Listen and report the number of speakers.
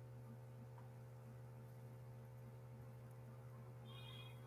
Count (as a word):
zero